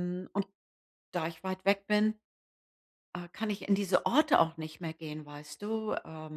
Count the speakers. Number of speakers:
one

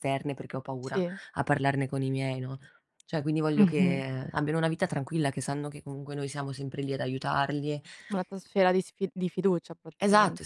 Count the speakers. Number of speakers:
two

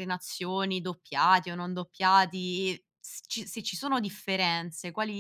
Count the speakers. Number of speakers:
one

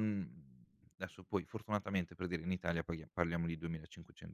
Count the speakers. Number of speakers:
one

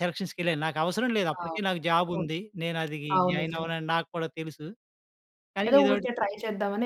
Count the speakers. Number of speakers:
two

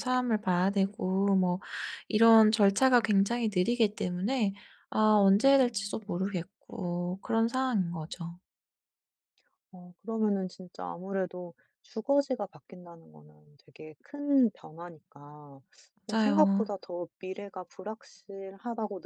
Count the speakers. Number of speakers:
two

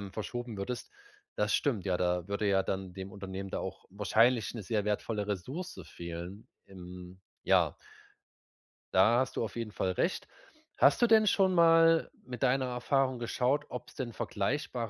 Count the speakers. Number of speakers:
one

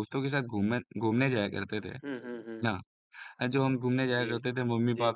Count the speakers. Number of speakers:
two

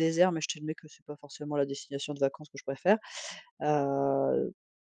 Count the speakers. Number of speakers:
one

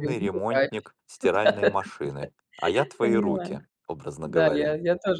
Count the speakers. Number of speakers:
two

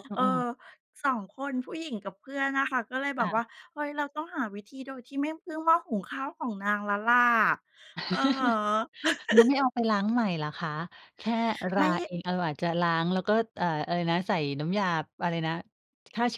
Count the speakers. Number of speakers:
two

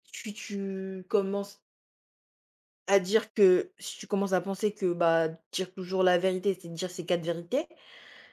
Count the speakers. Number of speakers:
one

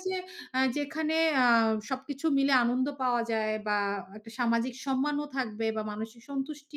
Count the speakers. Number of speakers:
one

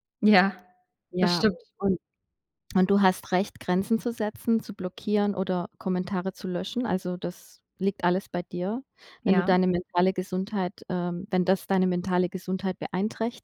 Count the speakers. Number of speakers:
two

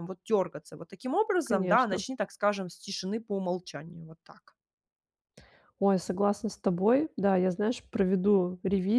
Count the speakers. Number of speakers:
two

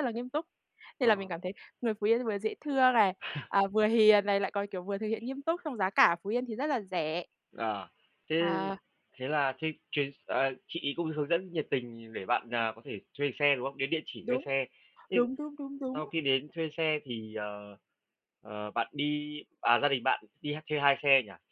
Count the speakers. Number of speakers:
two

